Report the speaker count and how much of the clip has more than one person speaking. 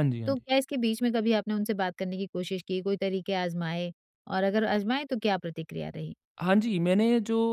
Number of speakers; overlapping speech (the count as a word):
two, about 1%